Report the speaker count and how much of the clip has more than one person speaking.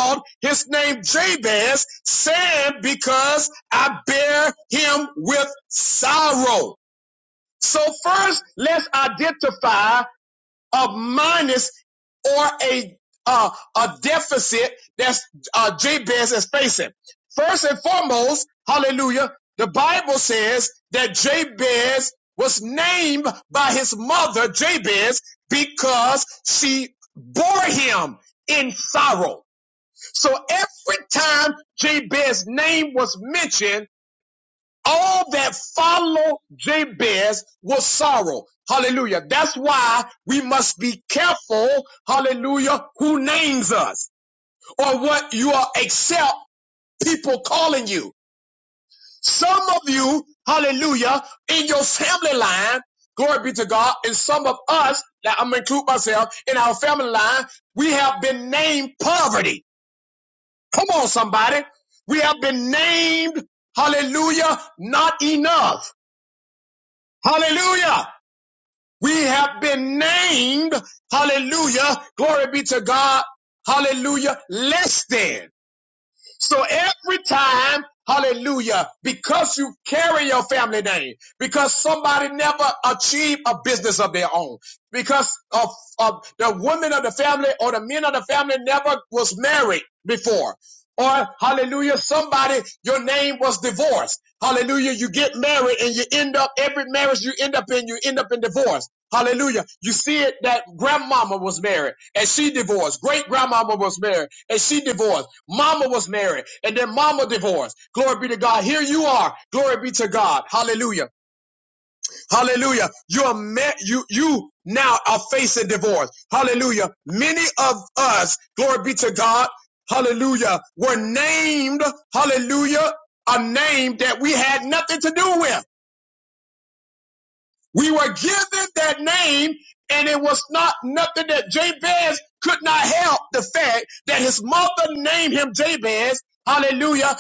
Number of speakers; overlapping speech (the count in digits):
1, no overlap